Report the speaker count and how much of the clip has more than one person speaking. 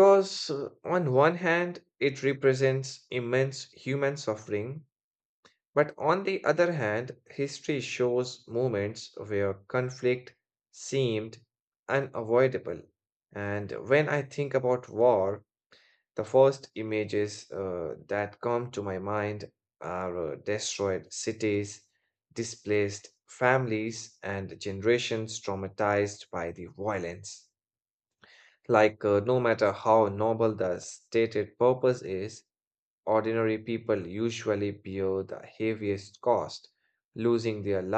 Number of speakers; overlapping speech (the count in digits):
1, no overlap